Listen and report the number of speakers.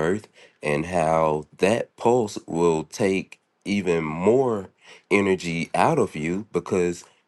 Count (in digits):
1